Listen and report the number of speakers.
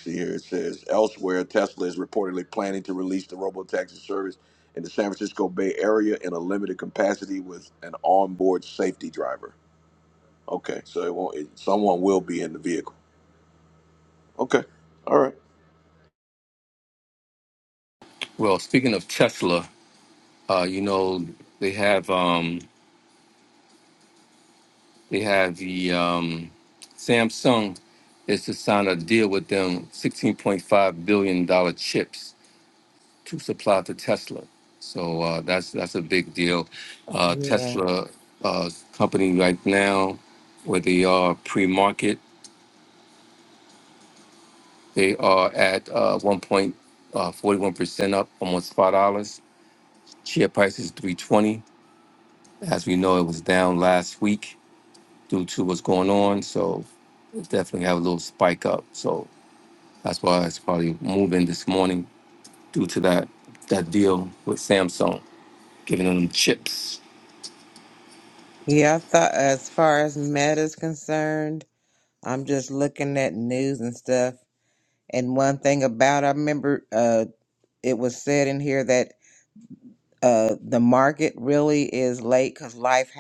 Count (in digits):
3